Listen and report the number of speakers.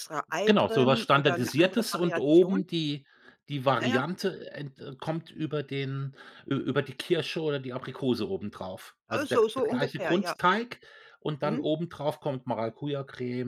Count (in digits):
2